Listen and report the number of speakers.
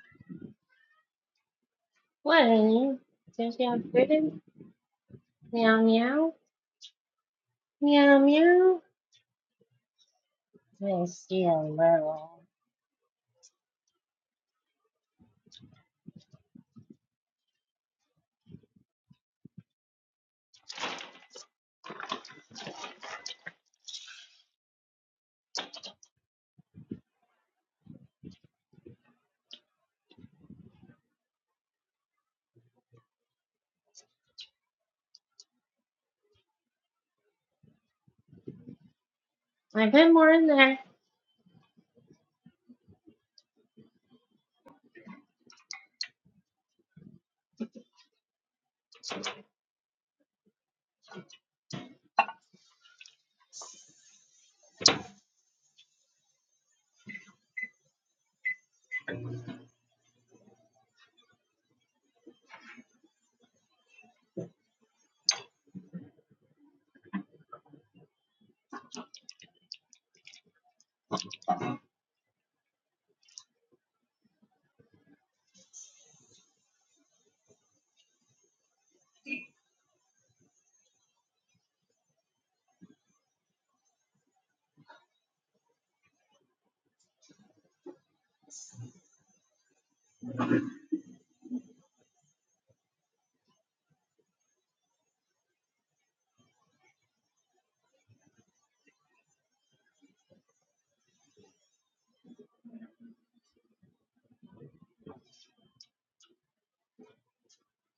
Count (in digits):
1